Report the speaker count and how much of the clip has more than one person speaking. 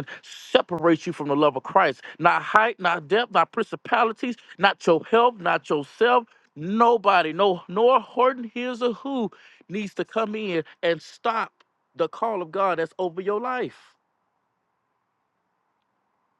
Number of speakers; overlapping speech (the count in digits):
1, no overlap